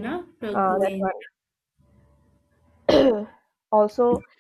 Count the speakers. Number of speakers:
2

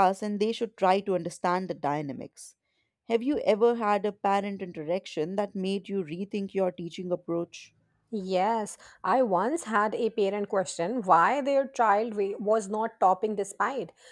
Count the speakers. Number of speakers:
2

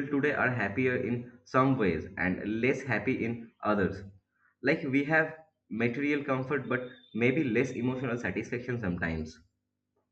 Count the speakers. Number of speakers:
1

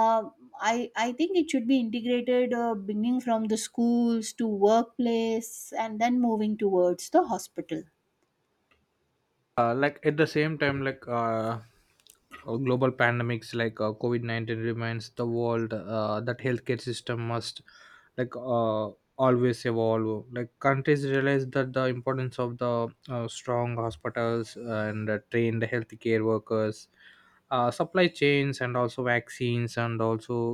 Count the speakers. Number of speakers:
2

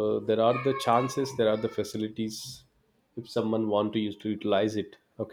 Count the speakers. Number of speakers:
1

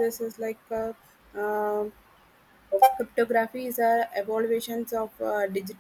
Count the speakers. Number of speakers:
1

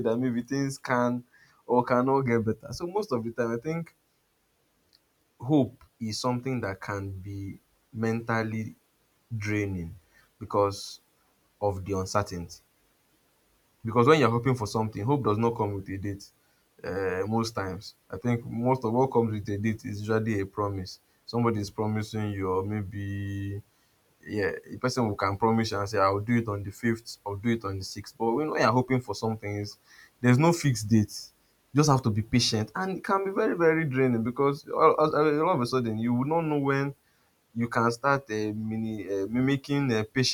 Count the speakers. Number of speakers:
1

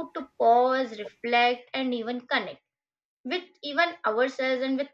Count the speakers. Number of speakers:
1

